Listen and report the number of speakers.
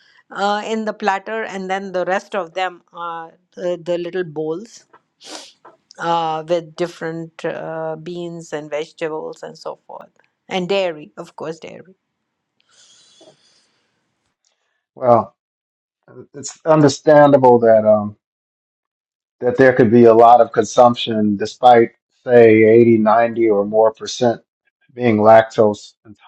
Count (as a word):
two